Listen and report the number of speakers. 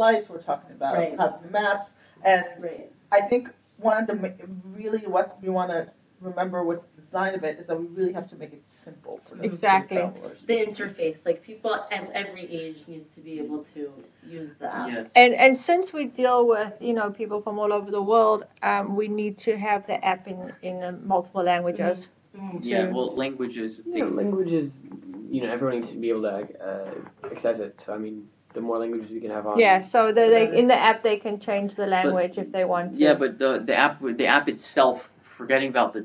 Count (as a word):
five